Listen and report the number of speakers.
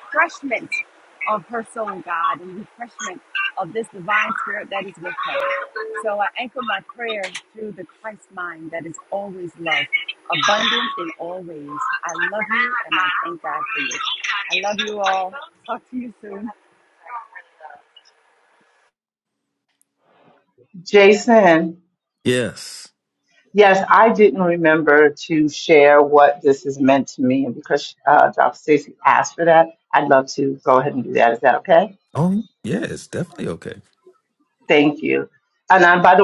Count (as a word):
three